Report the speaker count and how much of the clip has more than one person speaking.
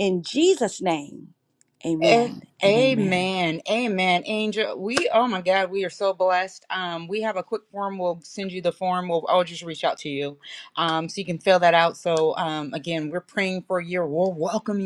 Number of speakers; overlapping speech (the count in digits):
2, about 8%